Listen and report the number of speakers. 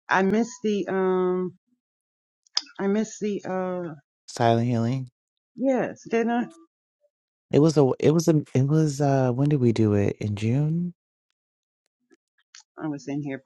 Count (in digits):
2